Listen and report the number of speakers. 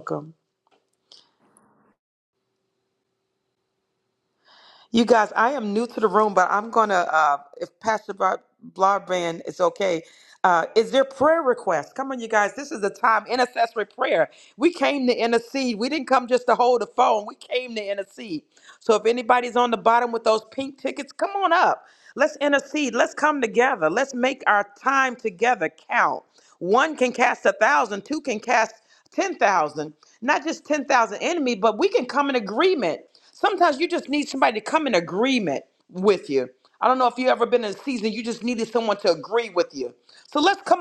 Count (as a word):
one